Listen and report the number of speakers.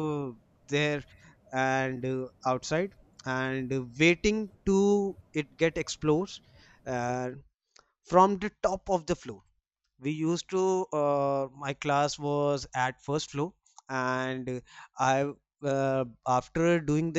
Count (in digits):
1